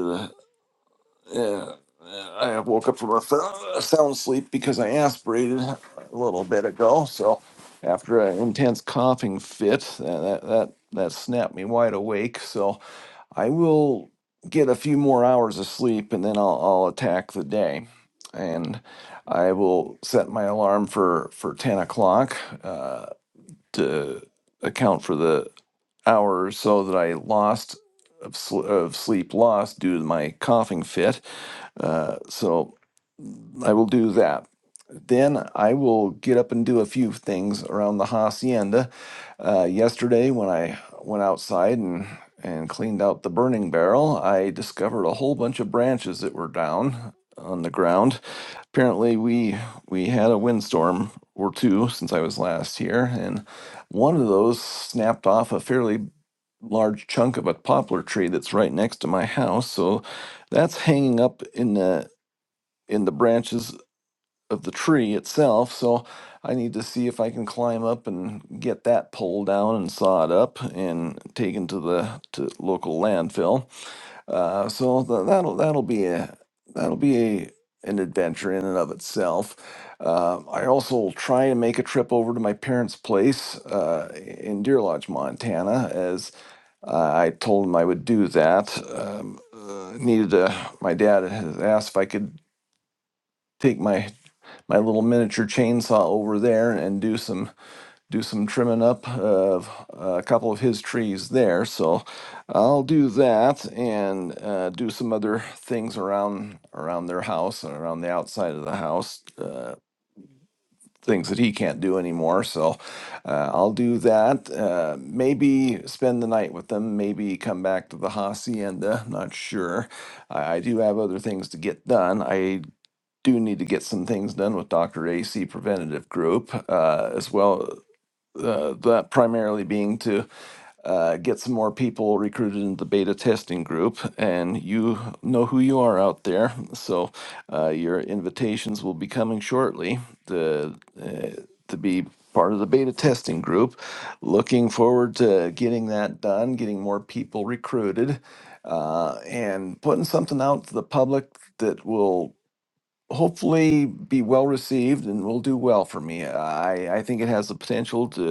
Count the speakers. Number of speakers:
one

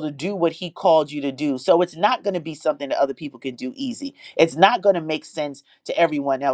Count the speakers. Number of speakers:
one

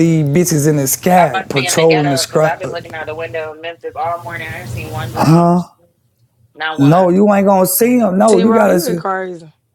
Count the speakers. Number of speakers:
three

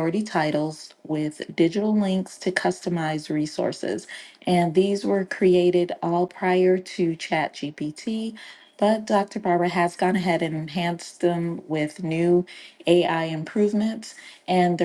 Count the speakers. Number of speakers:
one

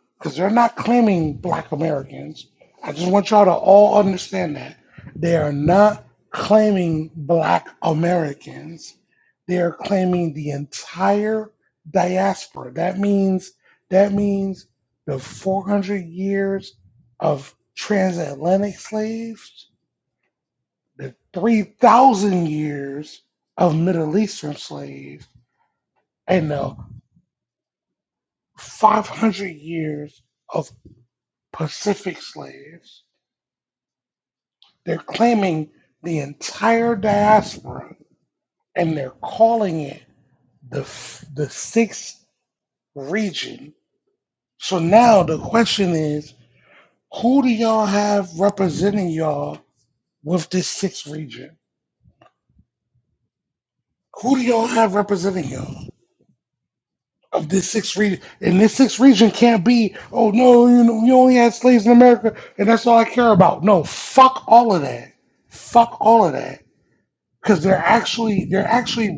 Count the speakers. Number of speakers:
one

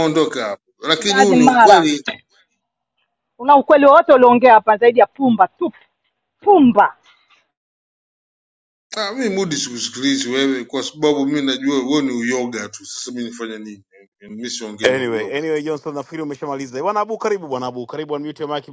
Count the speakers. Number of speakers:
three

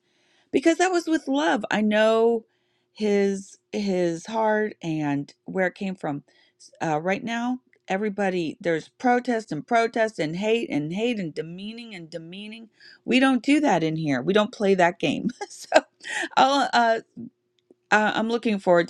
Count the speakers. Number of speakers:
one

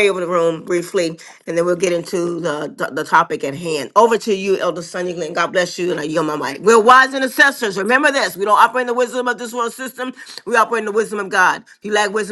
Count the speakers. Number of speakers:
one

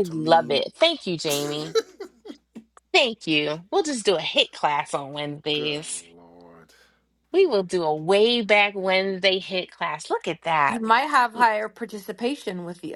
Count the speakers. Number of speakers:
three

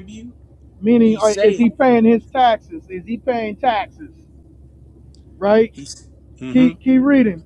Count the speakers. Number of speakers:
two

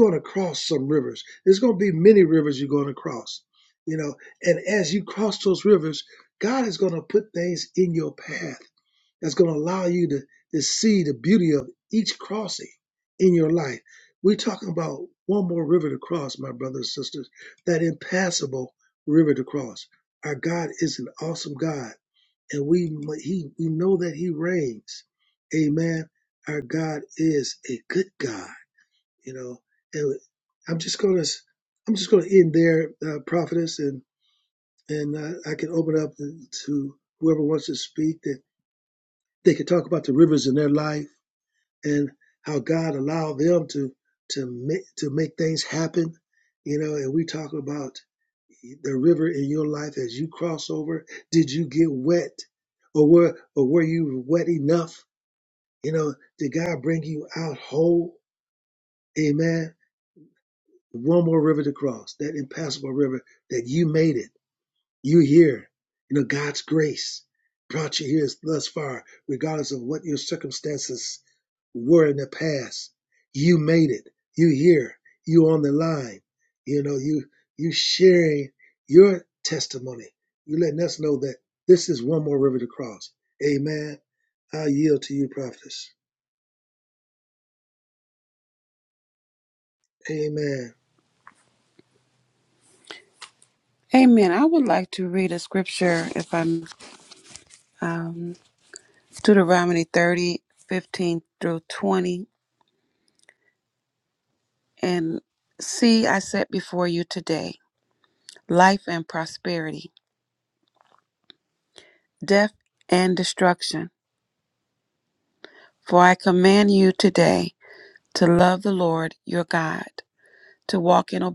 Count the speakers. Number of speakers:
two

